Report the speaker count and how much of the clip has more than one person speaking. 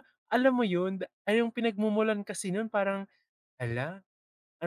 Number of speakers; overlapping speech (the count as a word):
one, no overlap